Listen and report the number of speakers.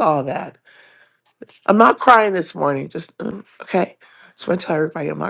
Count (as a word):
one